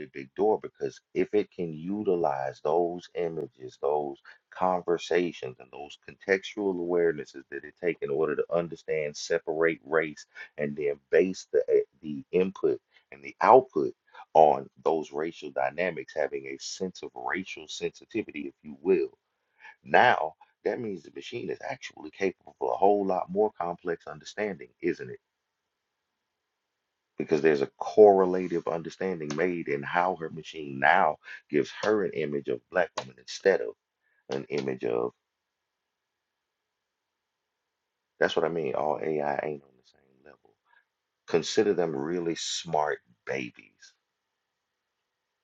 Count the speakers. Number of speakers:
1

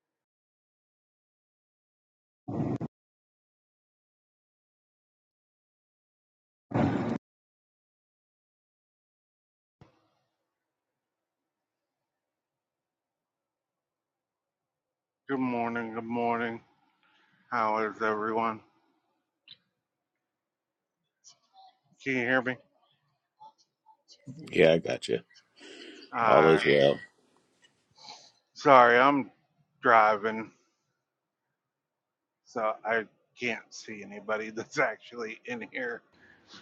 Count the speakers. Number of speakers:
2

